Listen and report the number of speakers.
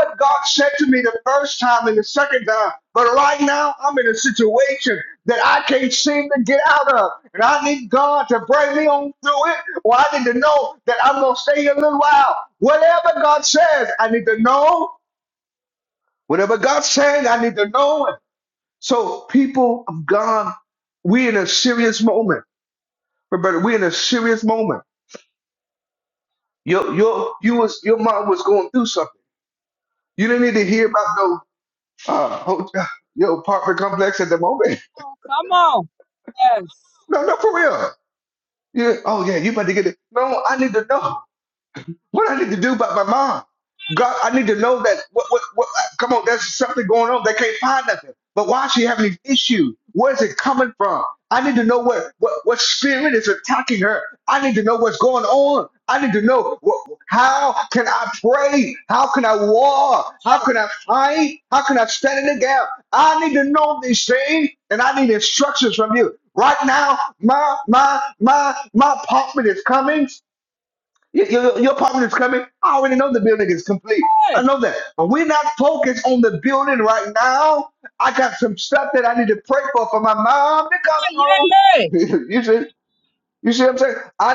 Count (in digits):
2